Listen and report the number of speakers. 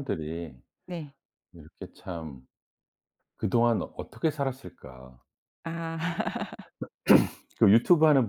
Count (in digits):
2